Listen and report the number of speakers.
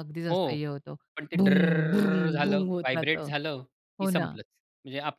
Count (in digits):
2